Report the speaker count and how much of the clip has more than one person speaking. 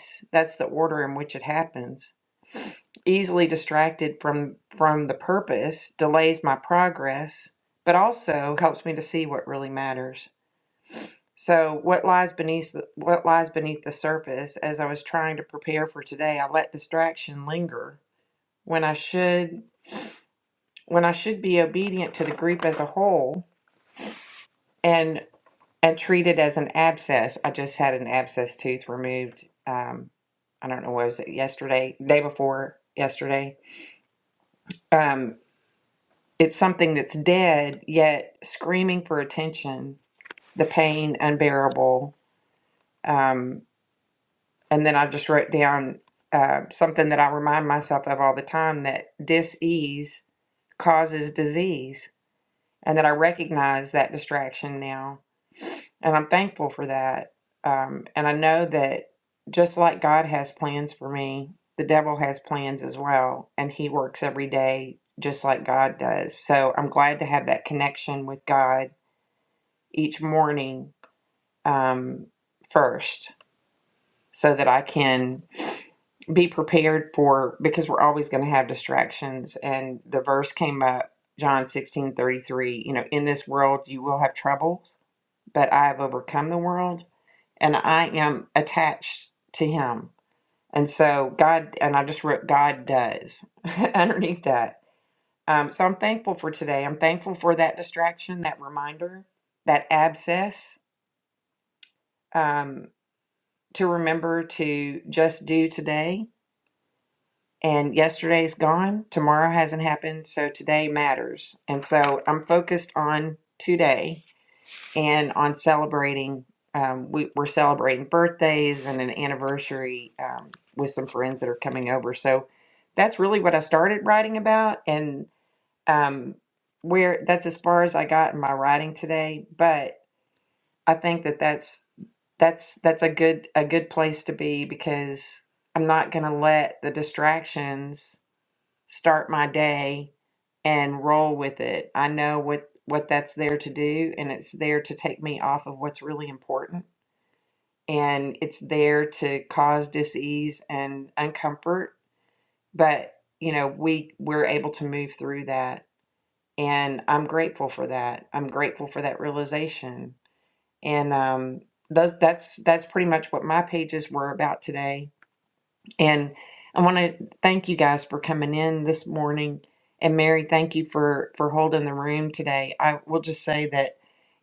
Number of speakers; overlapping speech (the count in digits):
1, no overlap